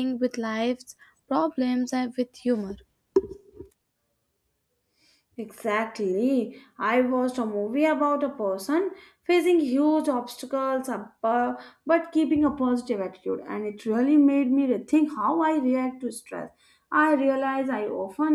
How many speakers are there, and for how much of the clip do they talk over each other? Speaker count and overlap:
2, no overlap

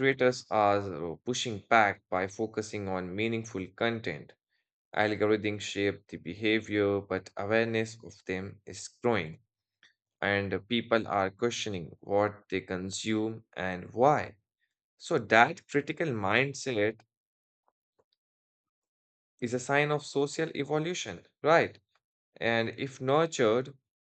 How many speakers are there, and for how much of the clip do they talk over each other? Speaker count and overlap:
1, no overlap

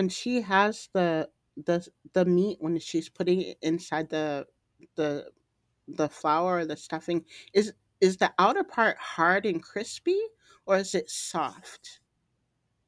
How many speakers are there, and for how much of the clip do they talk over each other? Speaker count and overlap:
1, no overlap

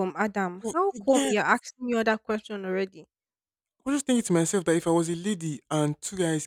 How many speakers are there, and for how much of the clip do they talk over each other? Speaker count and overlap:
2, about 11%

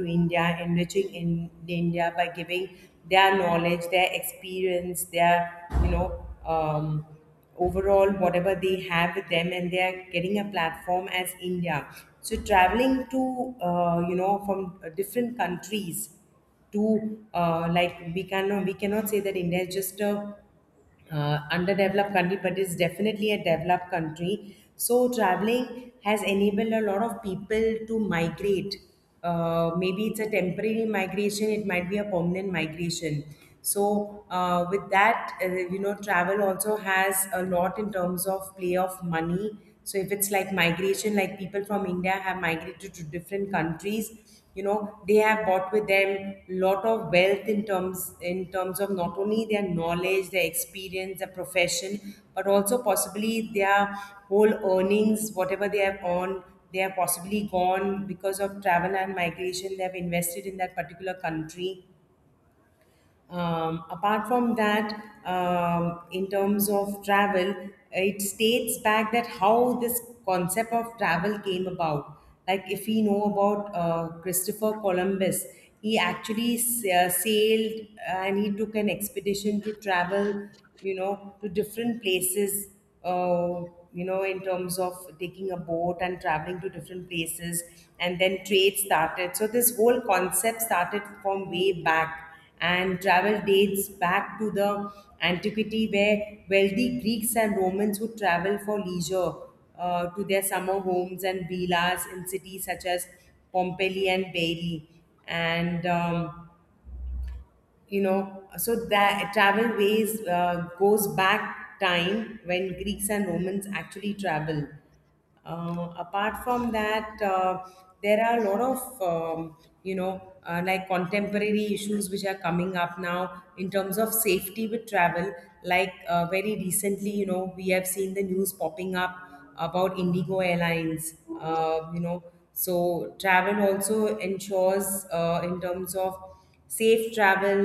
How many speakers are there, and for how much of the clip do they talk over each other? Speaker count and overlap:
1, no overlap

